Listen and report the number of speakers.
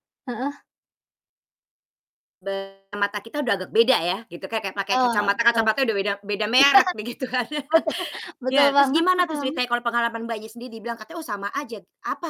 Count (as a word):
two